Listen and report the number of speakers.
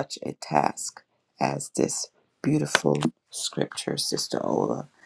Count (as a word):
one